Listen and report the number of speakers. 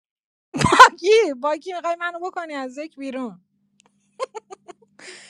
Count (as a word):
one